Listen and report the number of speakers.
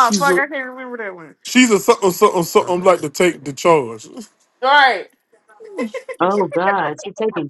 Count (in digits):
3